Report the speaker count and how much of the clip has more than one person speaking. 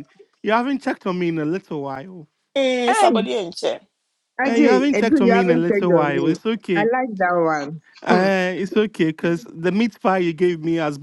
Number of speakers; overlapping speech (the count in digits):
3, about 23%